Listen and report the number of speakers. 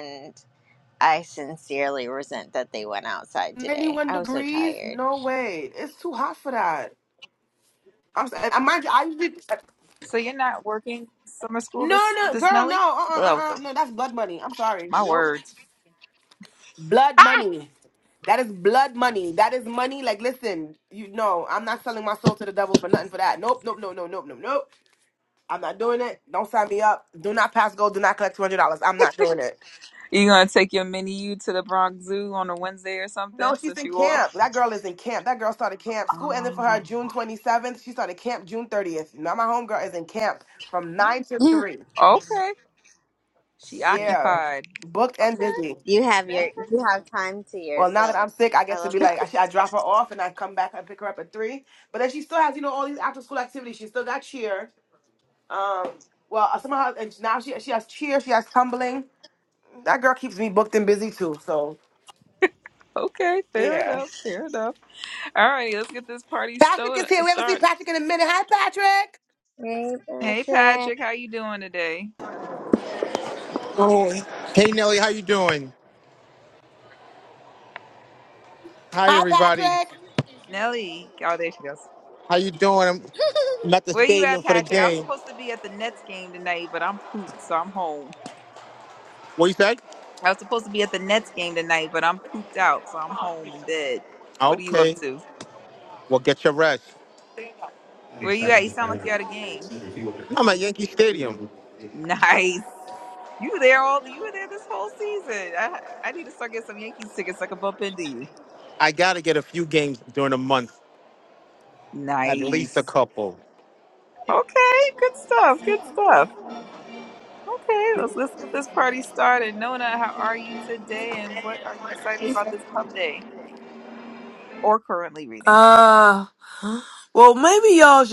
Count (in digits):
5